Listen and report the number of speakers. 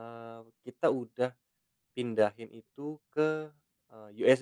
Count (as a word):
one